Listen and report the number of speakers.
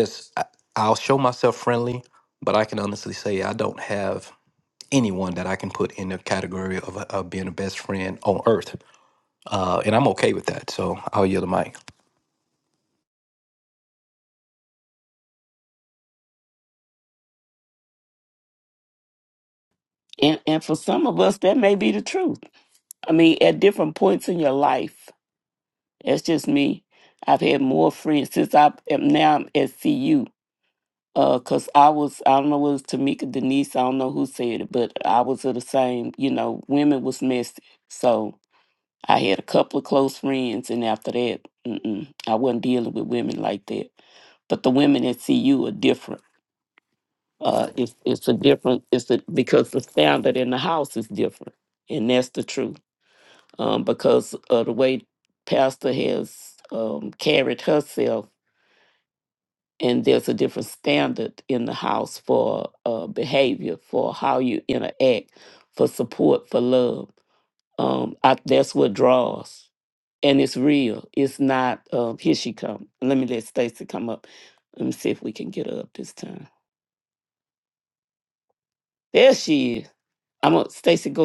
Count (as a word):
two